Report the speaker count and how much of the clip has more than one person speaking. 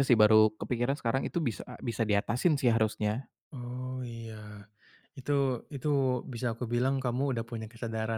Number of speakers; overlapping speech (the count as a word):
two, no overlap